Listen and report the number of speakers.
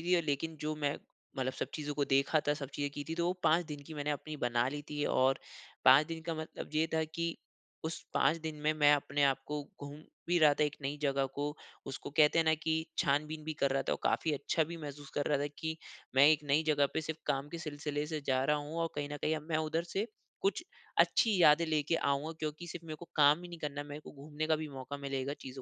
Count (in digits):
1